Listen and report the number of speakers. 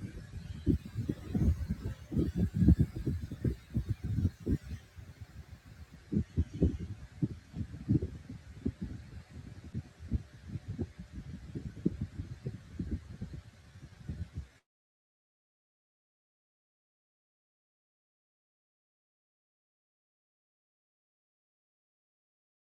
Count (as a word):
zero